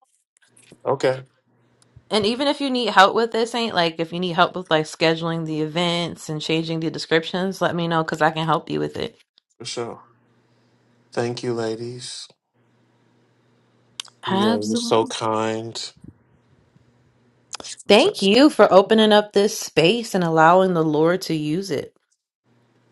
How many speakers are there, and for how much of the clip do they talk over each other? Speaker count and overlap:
2, about 5%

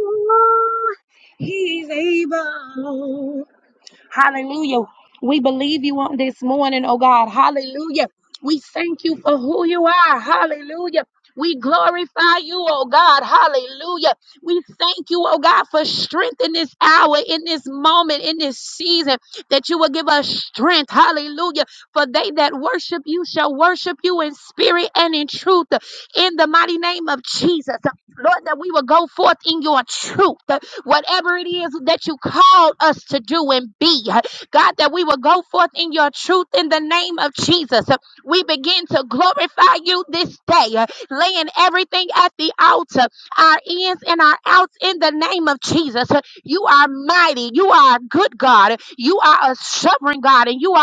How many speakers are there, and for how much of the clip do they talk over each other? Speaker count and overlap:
1, no overlap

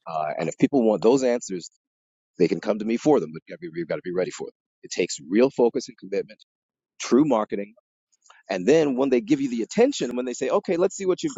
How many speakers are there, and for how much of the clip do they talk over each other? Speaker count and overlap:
1, no overlap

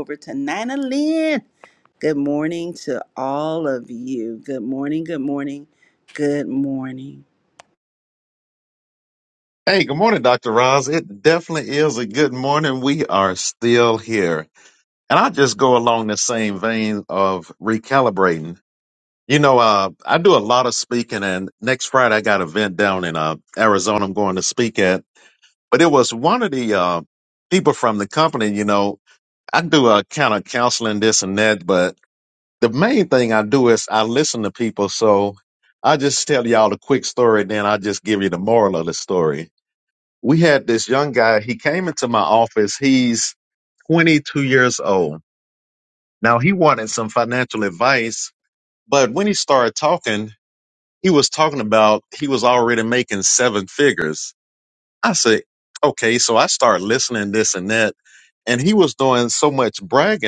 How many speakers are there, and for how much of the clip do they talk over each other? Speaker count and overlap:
2, no overlap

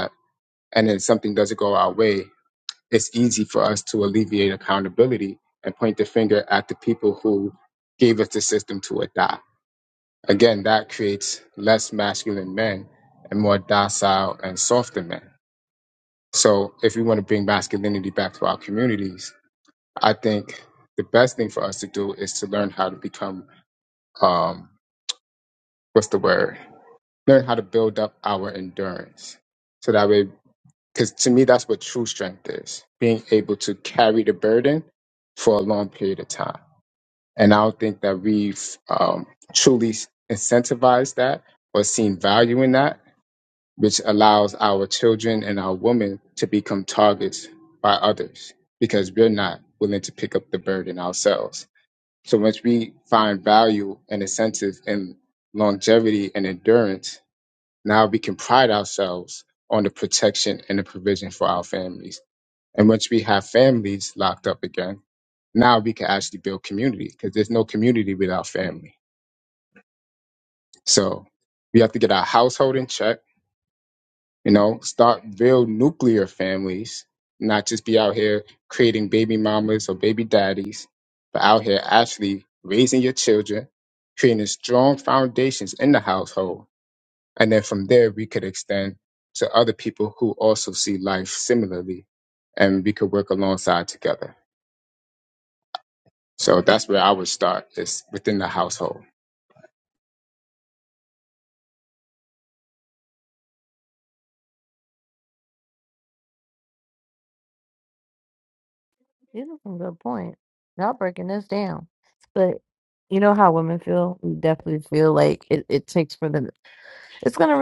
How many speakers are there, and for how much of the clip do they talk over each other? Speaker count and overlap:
2, no overlap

